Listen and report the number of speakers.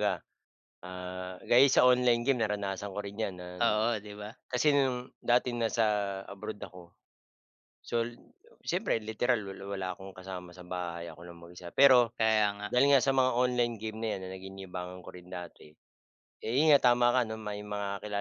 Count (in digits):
2